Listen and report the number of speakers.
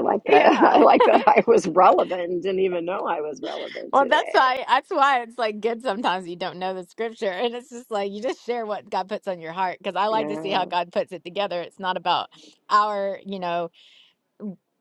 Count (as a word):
two